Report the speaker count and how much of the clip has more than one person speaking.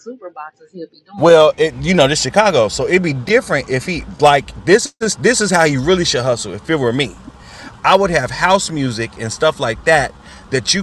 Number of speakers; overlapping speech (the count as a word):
two, about 2%